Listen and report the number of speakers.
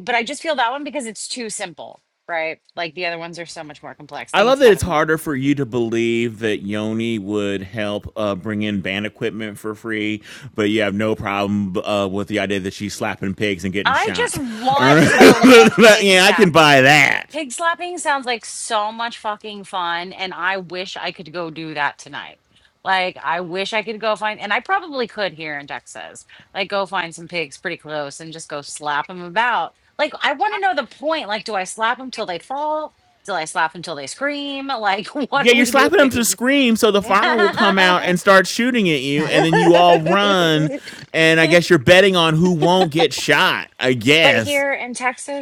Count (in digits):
2